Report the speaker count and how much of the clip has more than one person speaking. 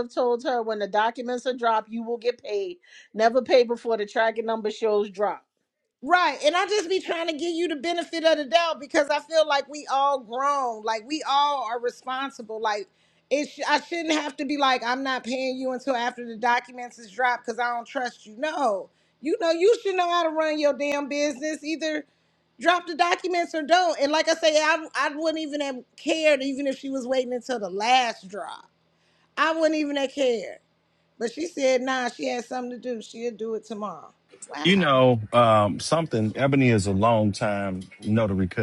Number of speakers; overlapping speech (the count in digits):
3, under 1%